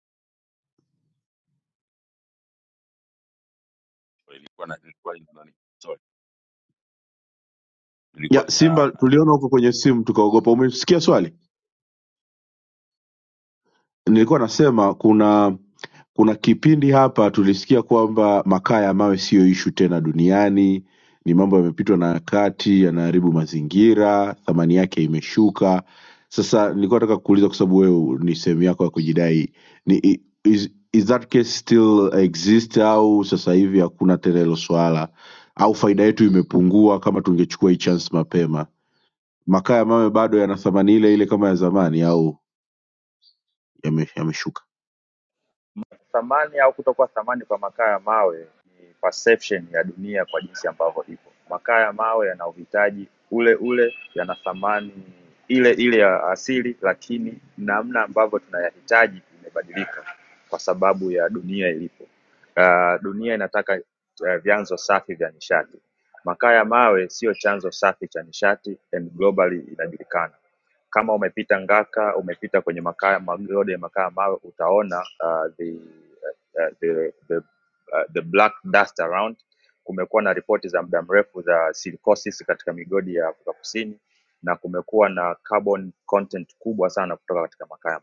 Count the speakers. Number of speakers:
three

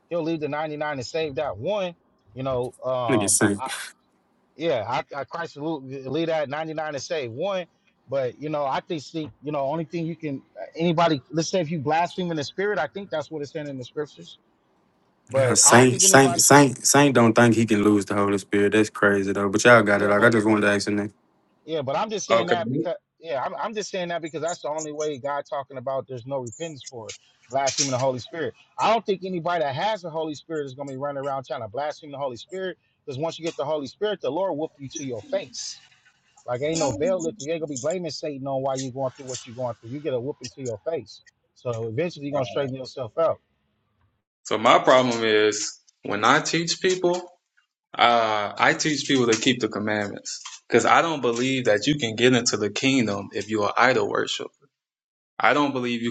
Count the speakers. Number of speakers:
three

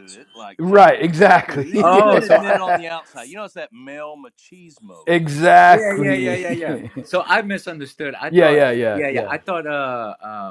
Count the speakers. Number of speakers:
three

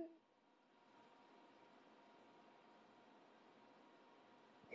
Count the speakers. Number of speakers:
zero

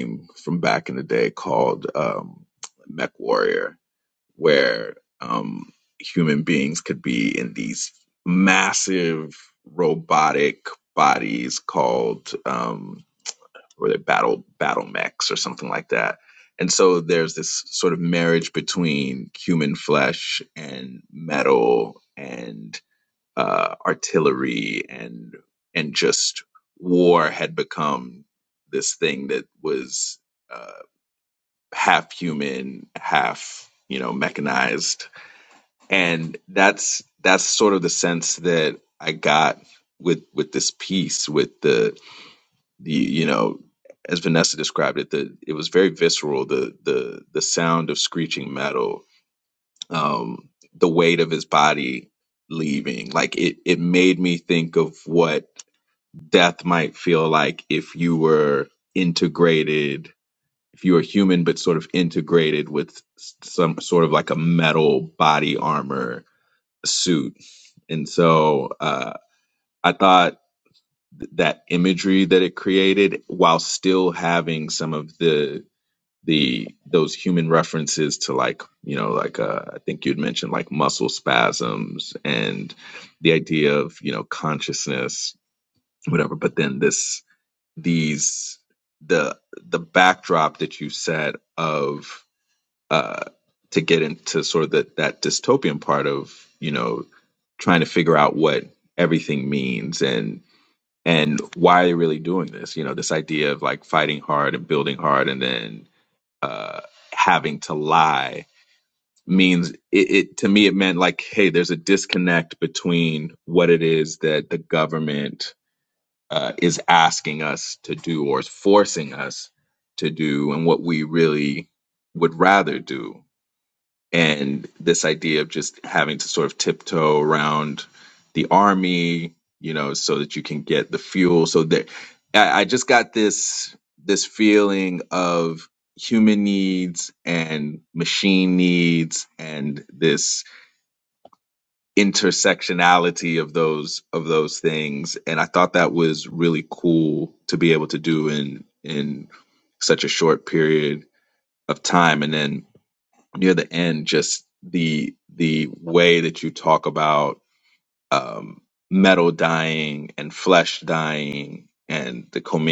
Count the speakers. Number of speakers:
one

